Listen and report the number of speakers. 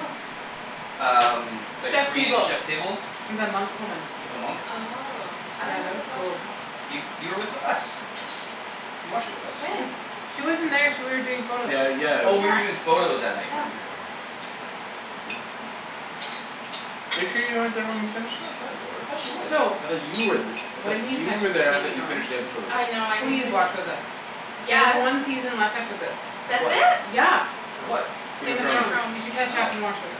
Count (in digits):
4